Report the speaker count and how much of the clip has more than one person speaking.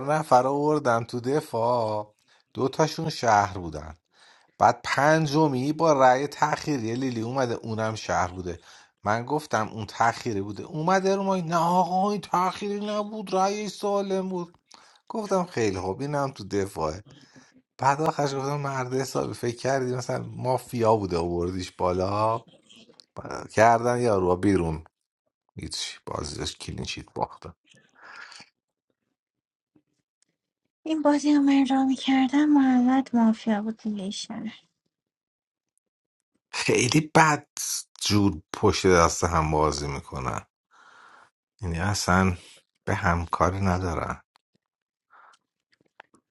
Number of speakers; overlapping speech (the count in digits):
2, no overlap